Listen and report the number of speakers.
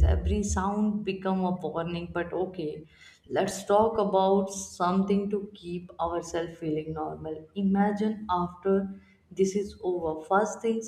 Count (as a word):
one